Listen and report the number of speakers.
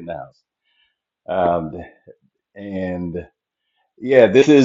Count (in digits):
1